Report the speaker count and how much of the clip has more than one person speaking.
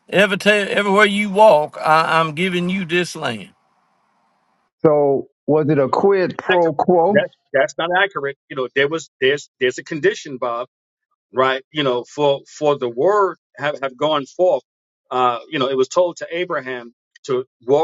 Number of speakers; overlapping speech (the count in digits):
3, about 2%